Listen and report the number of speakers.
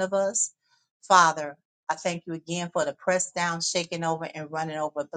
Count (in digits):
1